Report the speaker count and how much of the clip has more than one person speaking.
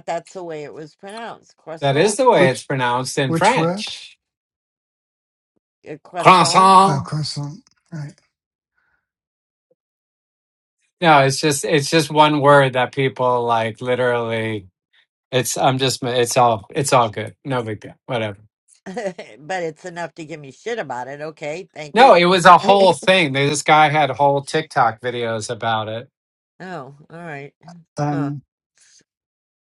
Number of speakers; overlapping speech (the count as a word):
three, about 9%